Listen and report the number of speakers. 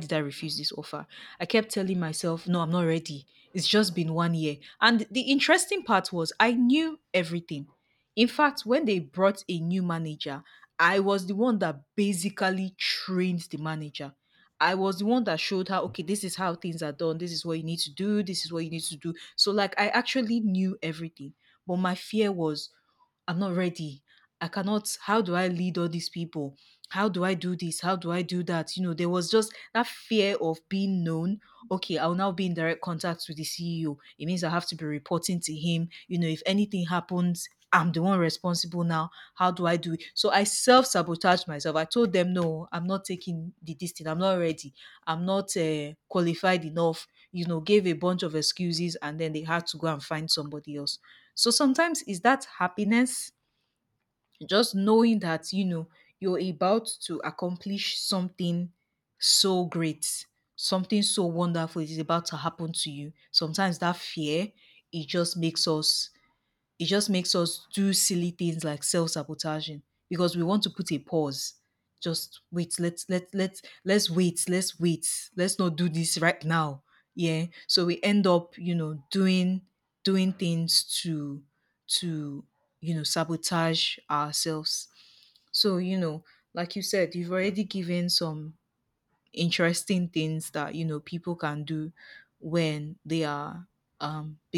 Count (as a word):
one